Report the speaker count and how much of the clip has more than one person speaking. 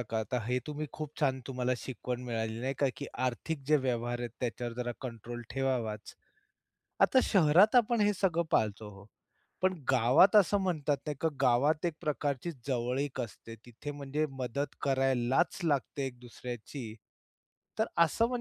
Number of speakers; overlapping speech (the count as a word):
one, no overlap